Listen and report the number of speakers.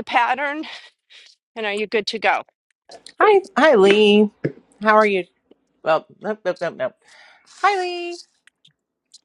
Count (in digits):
2